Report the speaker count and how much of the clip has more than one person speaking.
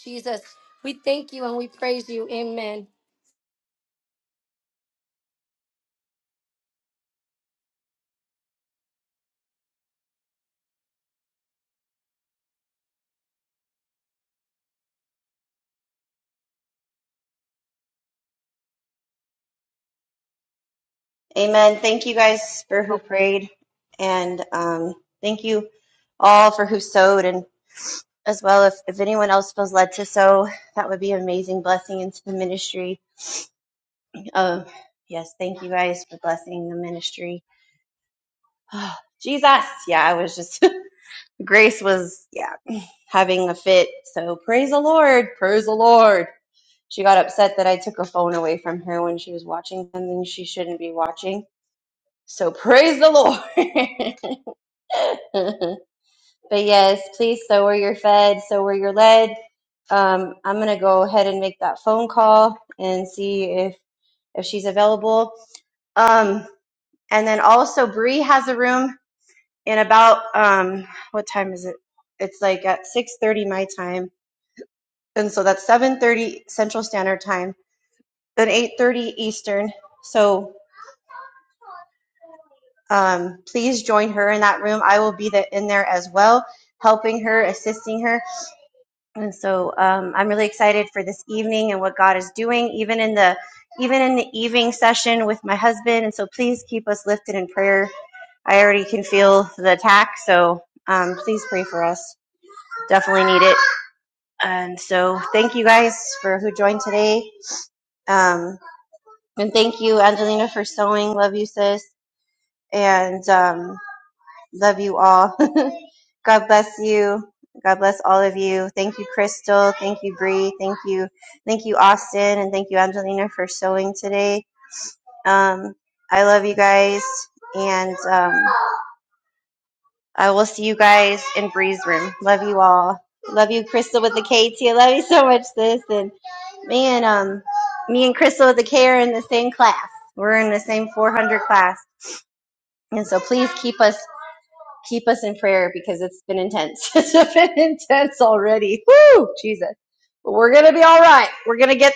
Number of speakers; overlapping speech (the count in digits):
2, no overlap